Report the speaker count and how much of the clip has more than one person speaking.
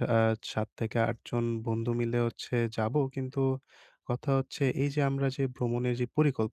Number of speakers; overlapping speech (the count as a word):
one, no overlap